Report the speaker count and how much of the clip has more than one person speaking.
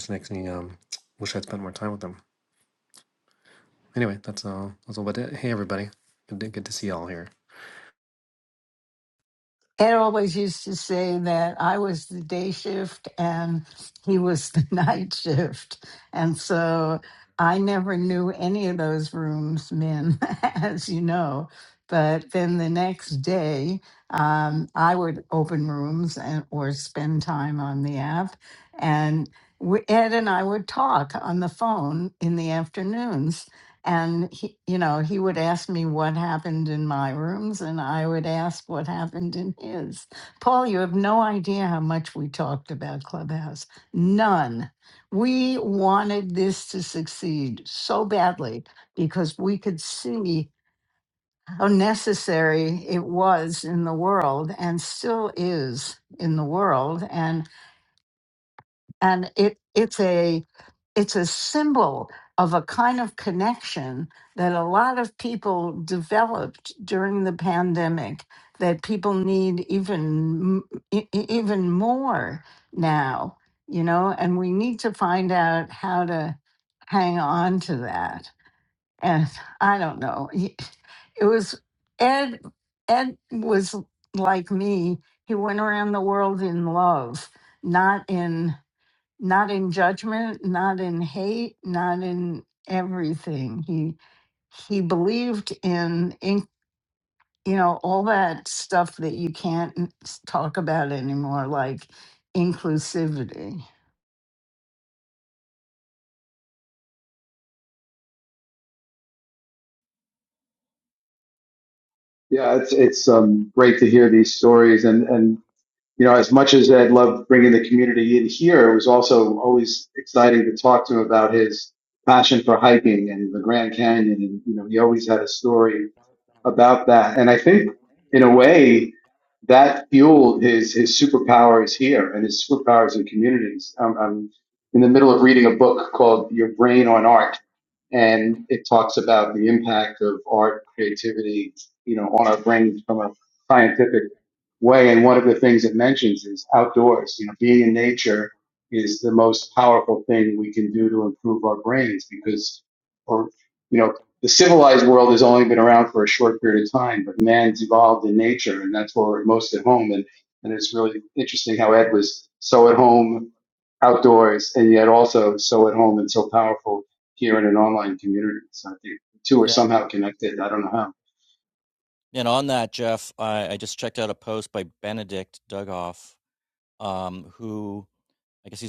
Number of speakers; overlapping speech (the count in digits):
4, under 1%